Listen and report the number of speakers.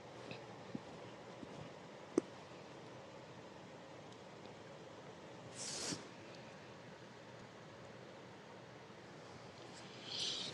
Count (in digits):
0